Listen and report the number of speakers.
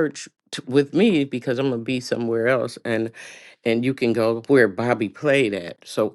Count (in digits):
1